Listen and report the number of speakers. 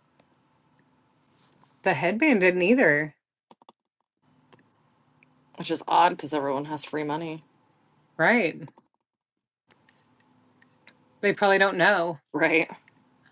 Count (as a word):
two